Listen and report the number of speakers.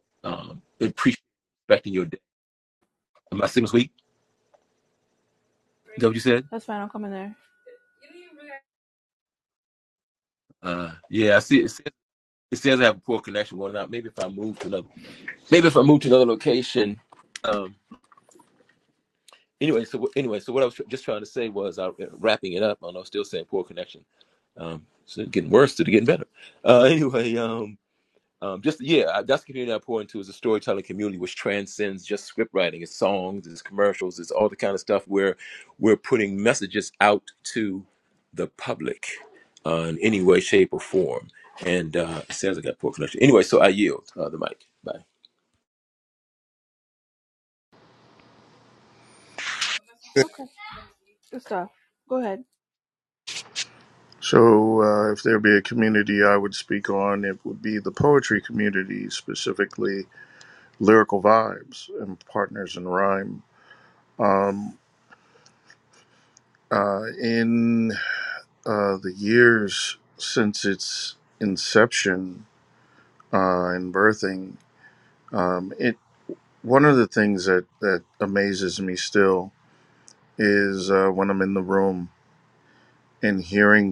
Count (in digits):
3